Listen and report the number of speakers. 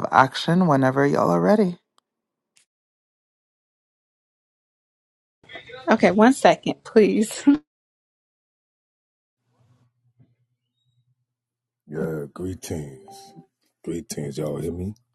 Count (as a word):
three